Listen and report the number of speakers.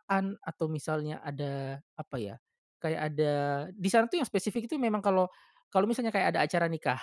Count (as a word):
one